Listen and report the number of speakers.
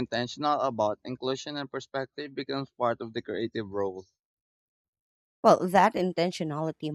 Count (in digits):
2